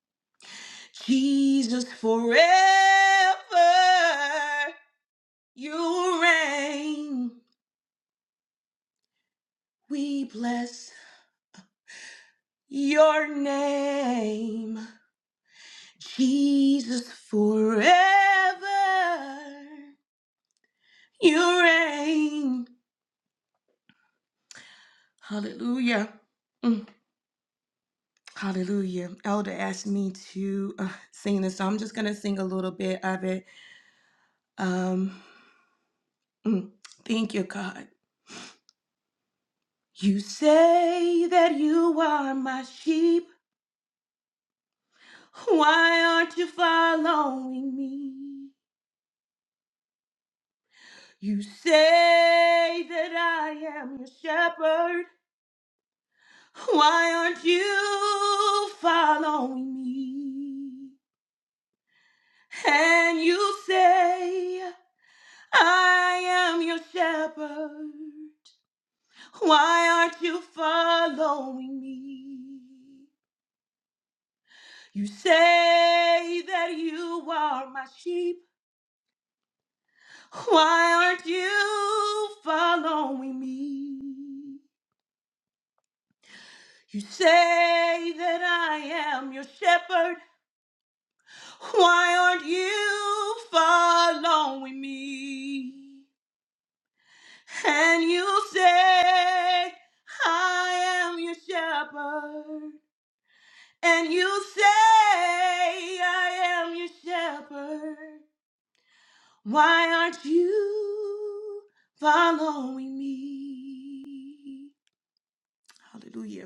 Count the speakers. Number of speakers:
1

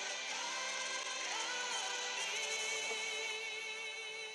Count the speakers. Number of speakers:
0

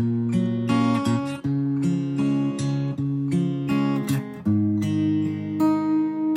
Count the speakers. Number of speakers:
0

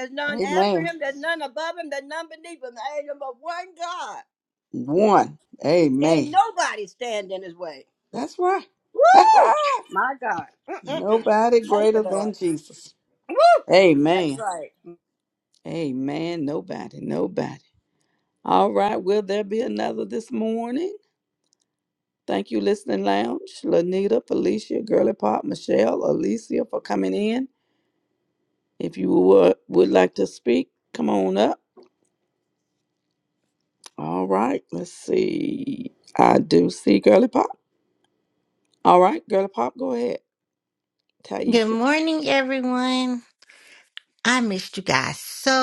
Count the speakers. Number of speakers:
3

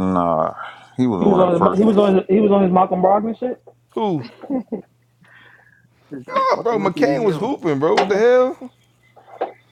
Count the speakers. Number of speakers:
3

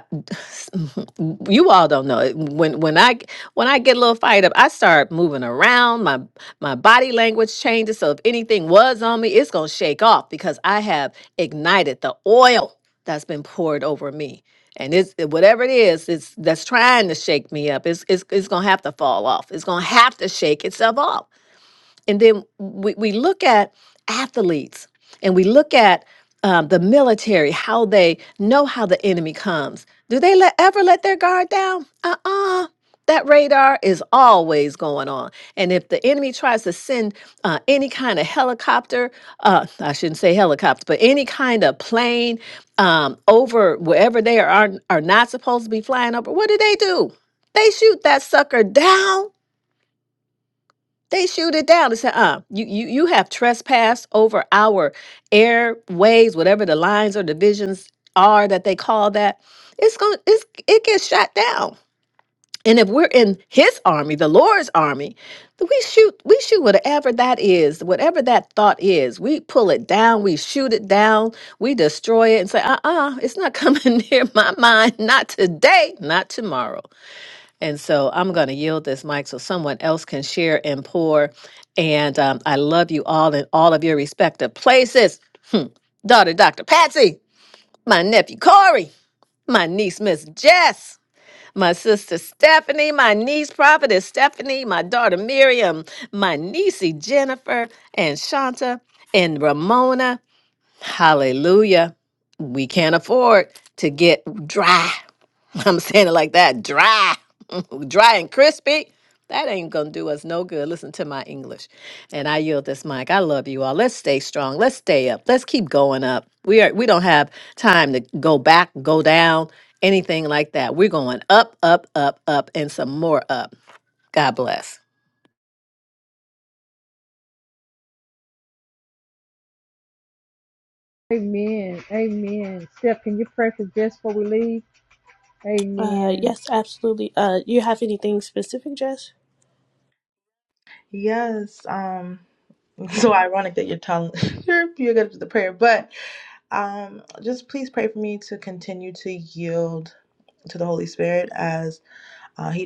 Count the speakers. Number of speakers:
4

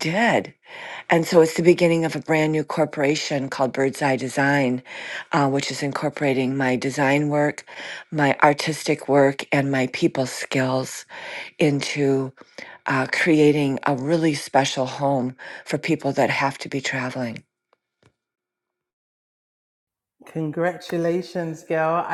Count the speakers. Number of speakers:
2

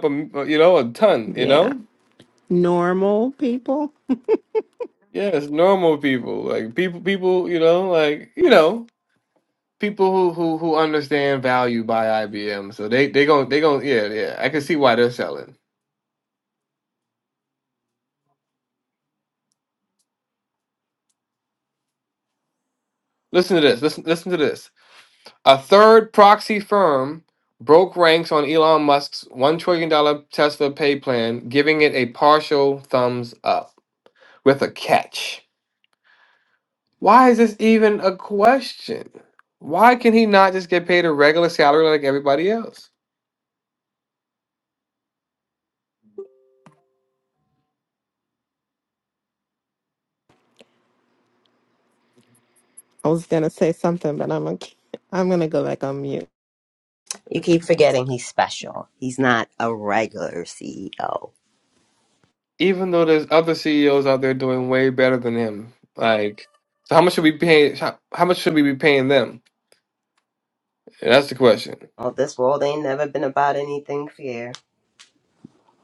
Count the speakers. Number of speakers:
3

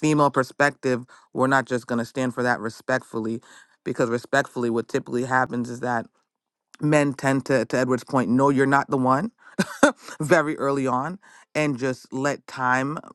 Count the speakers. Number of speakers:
1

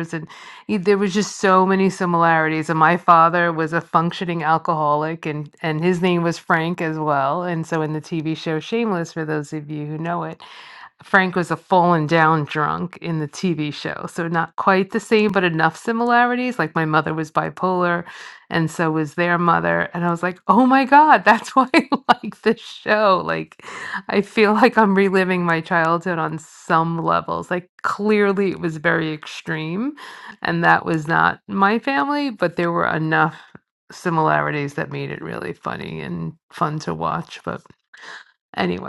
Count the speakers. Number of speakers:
1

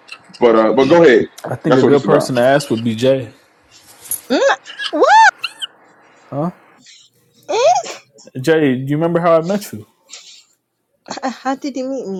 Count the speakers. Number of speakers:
3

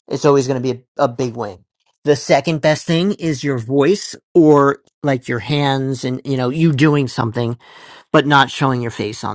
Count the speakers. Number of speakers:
1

